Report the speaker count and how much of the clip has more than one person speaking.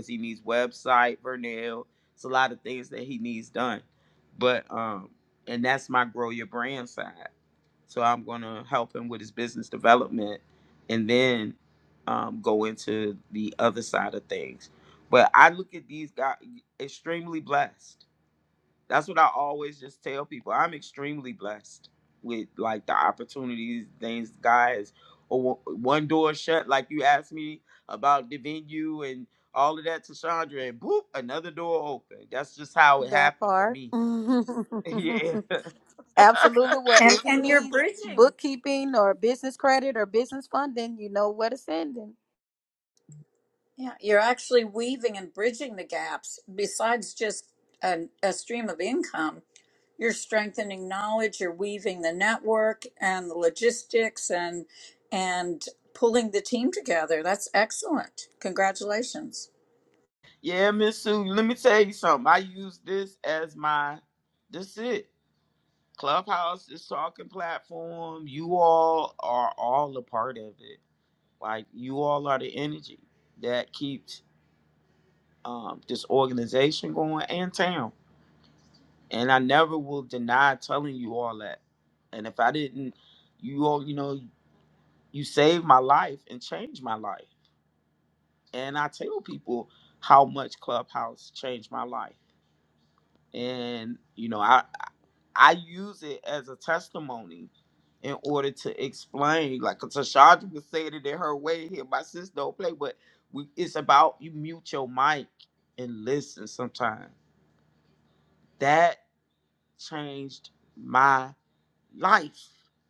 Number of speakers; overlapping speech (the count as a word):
three, about 2%